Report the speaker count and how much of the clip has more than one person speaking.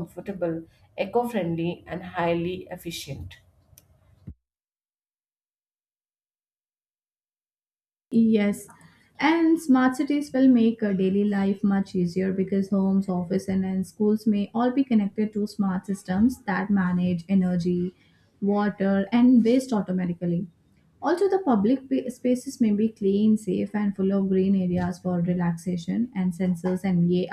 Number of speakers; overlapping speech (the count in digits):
2, no overlap